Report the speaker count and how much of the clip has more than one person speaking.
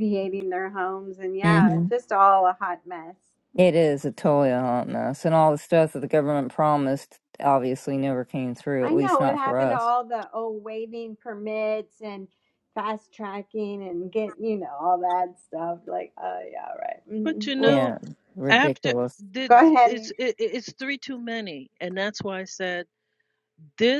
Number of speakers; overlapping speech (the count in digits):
3, about 12%